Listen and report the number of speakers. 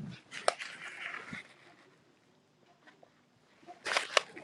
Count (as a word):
zero